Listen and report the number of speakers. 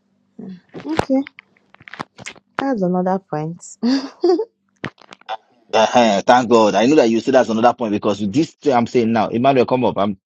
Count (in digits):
2